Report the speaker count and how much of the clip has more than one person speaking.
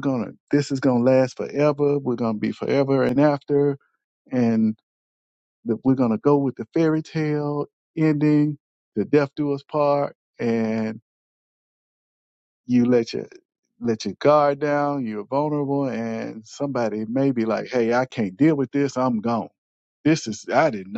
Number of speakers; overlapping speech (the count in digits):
1, no overlap